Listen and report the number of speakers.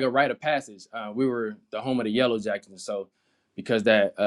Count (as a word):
one